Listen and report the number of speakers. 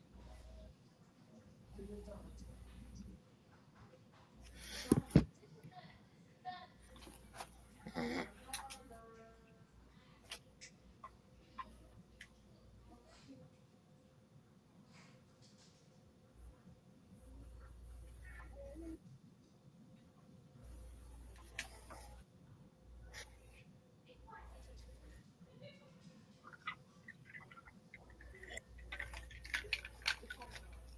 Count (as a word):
zero